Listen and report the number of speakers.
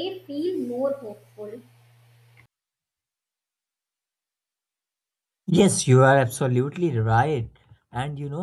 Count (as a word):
two